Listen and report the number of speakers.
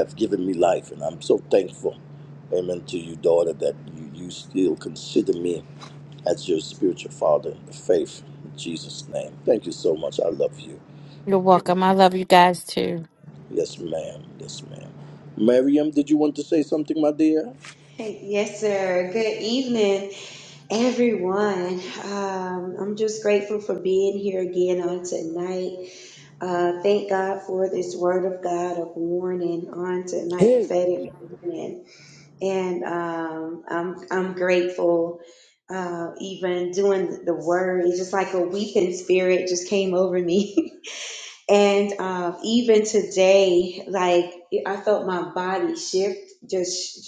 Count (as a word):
three